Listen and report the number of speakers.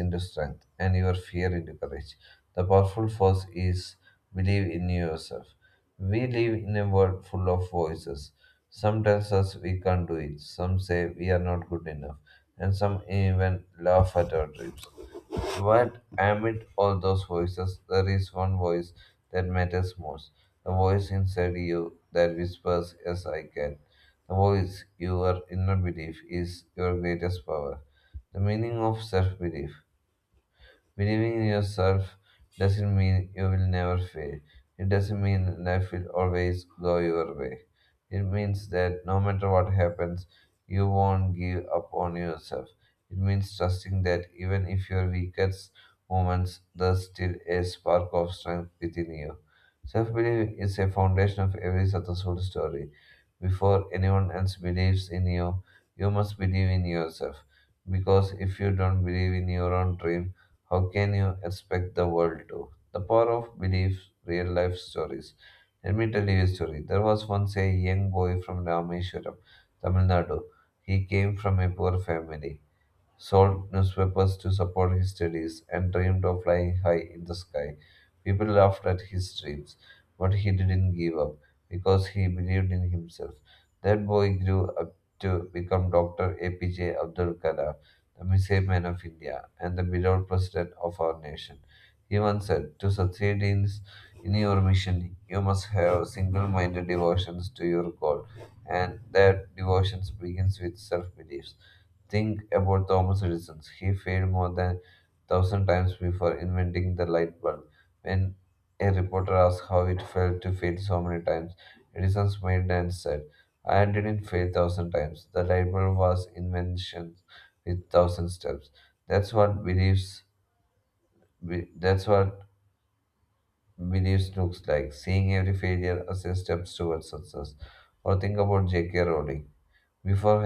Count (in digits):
1